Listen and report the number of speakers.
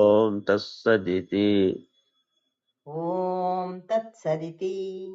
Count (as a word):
two